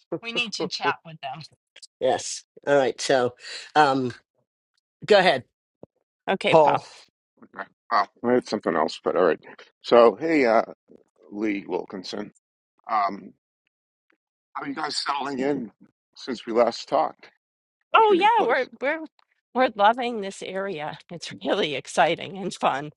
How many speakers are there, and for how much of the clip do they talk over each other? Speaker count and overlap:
3, about 4%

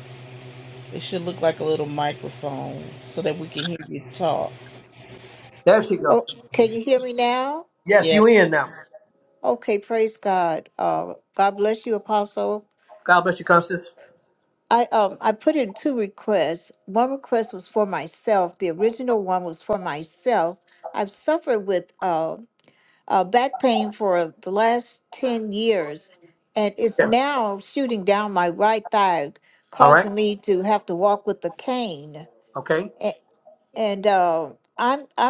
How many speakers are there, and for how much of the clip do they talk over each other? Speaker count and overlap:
3, about 2%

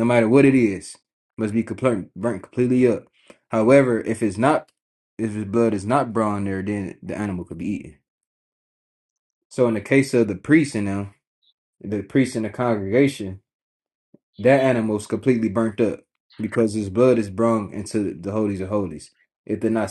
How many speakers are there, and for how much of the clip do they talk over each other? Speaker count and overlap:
1, no overlap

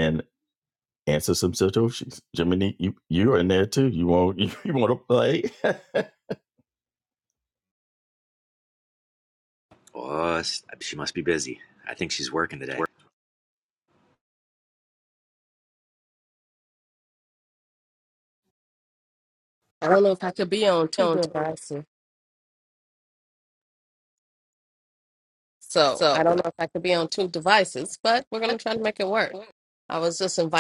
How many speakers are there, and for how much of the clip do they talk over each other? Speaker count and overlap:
3, no overlap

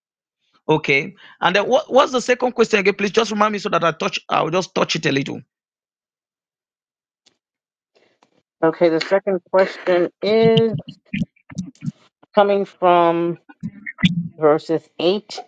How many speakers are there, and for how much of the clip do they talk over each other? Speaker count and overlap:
2, no overlap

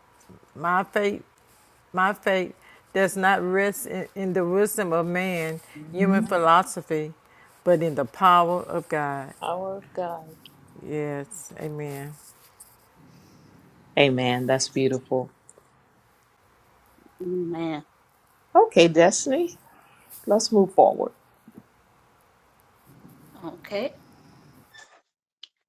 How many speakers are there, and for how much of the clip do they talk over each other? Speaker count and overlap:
4, about 1%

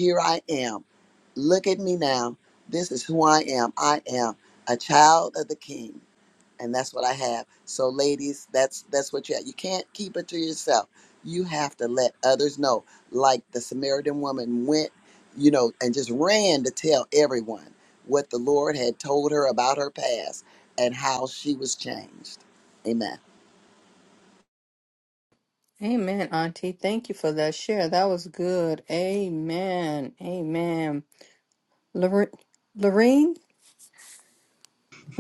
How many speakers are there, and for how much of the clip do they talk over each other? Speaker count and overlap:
2, no overlap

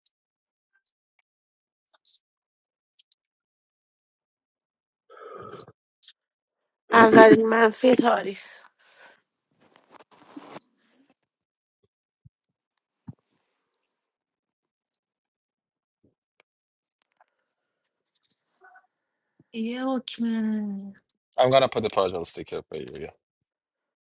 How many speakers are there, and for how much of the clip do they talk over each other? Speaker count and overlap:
3, no overlap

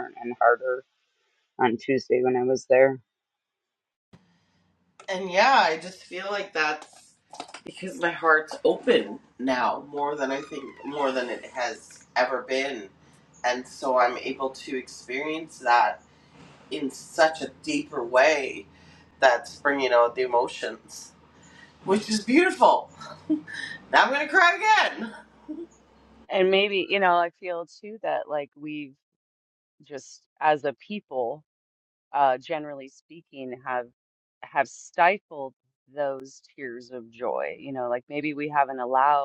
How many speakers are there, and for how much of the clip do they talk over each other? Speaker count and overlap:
3, no overlap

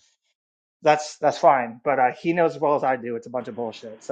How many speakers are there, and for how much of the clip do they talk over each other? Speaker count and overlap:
1, no overlap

